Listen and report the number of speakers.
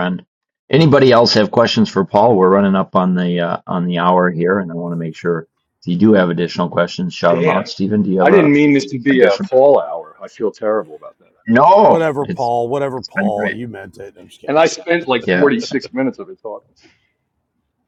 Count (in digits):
3